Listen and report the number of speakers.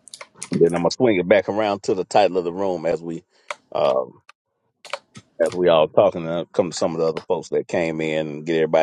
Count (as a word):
one